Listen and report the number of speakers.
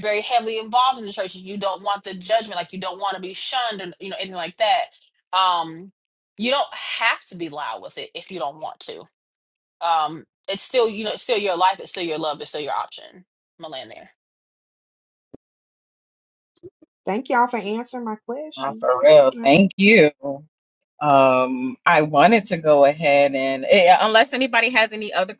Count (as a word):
three